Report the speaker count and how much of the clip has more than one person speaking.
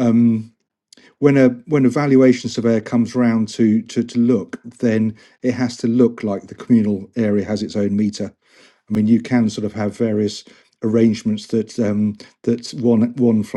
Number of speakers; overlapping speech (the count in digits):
1, no overlap